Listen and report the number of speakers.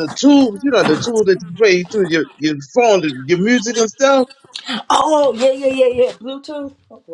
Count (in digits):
2